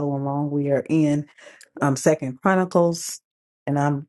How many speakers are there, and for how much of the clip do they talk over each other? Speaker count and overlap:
one, no overlap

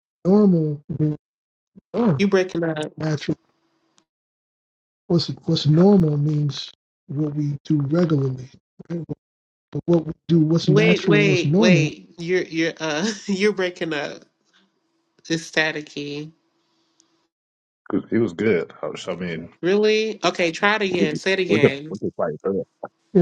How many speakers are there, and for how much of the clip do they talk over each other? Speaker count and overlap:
three, about 10%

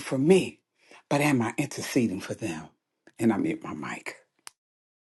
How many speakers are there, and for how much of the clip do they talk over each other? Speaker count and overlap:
one, no overlap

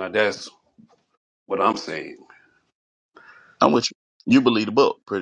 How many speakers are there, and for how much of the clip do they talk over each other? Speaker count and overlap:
two, no overlap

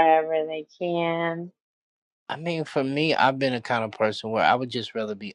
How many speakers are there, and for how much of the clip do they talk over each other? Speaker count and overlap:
two, no overlap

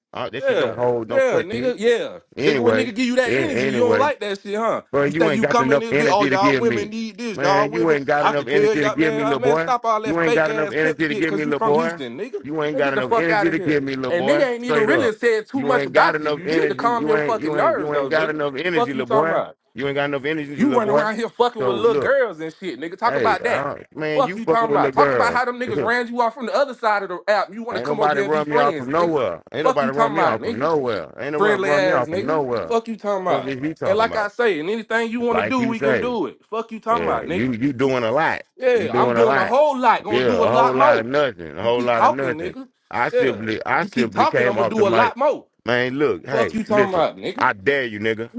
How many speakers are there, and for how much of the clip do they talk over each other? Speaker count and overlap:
two, about 61%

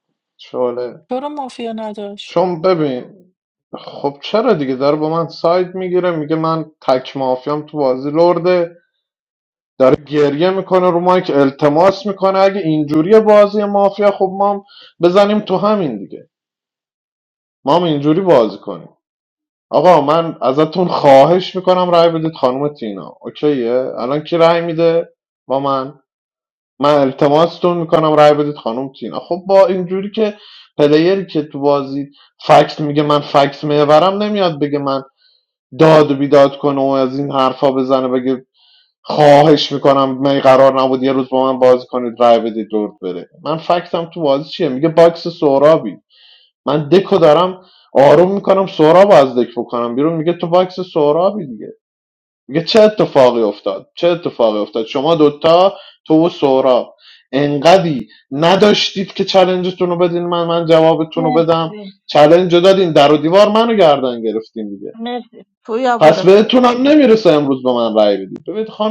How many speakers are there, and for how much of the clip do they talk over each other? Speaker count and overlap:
three, about 1%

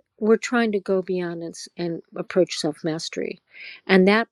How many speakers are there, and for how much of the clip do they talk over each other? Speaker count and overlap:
one, no overlap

